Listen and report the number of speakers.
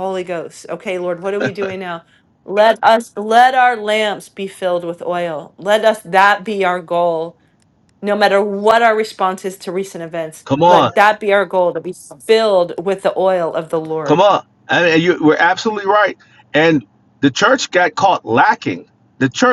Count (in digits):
2